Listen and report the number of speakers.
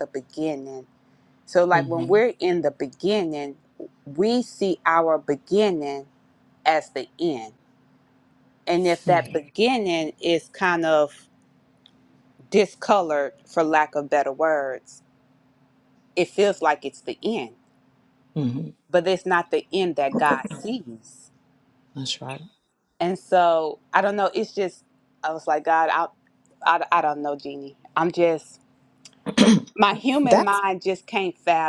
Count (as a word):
two